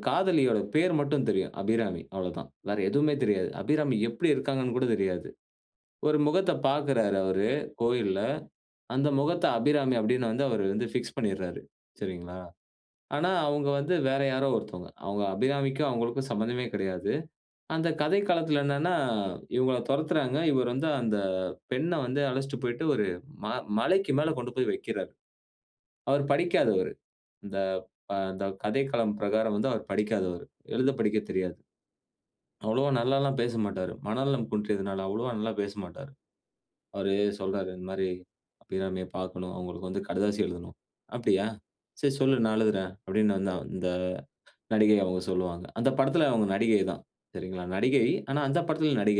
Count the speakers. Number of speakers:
one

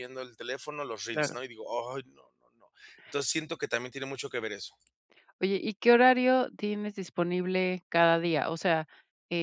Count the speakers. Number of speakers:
two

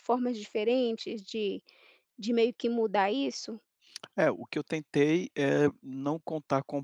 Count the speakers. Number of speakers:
two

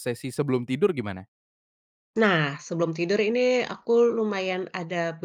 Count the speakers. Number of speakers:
two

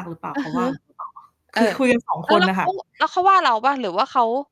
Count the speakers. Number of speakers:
two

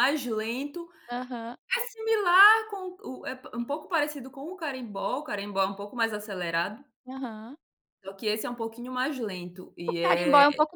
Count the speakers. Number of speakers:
two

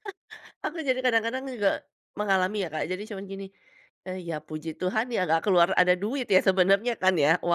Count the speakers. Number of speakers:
one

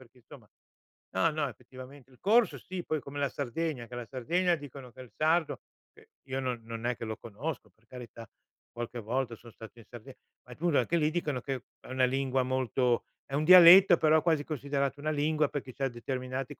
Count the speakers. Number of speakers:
one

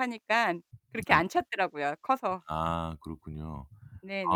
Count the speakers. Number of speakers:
two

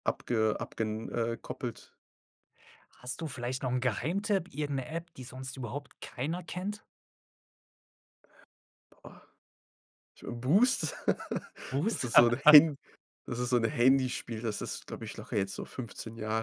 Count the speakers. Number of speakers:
two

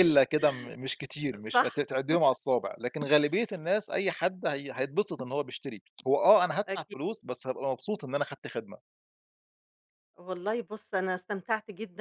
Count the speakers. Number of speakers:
two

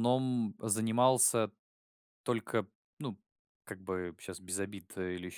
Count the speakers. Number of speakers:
one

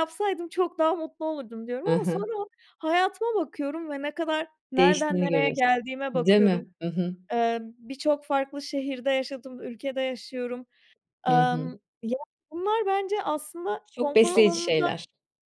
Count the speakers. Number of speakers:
two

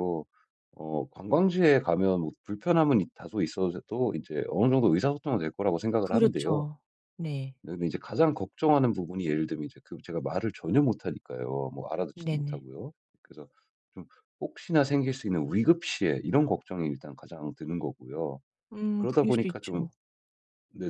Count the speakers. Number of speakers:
two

